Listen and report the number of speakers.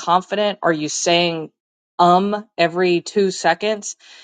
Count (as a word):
one